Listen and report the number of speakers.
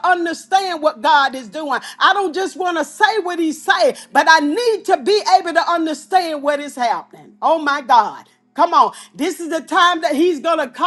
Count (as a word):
one